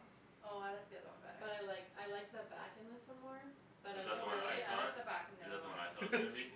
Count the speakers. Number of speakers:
3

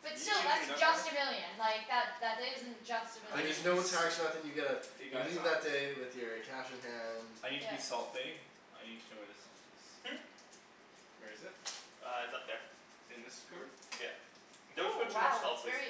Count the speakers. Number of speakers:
4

